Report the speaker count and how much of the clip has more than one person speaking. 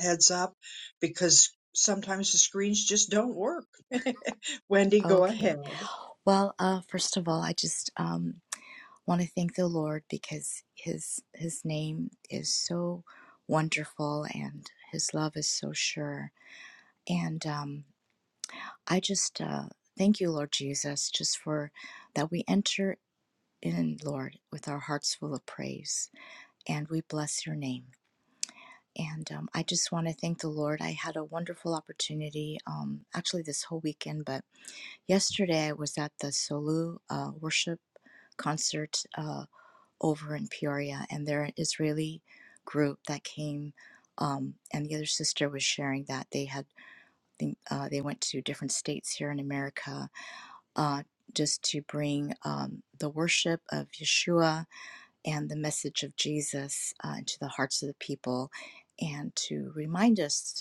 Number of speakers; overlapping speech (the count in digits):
2, about 1%